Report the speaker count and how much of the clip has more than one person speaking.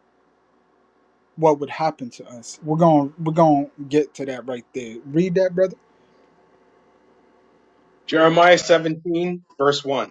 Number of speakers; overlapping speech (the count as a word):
two, no overlap